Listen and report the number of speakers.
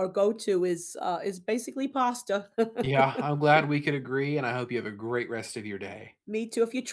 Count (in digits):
2